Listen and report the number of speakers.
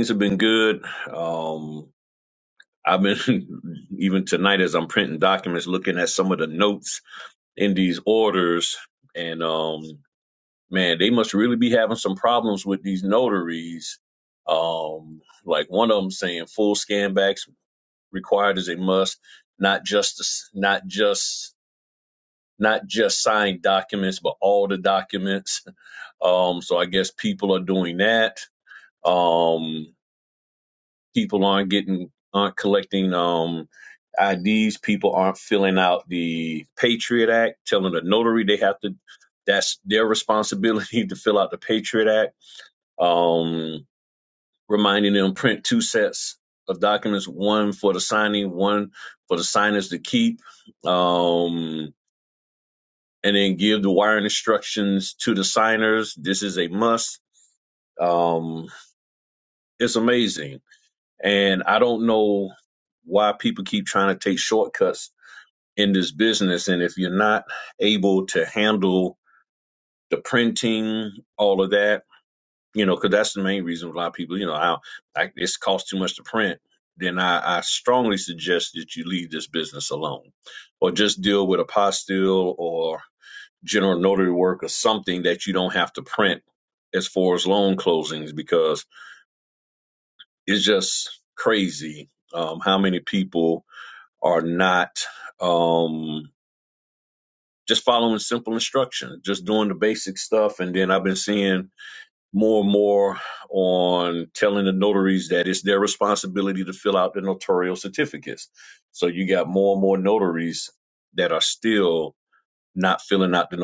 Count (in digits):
1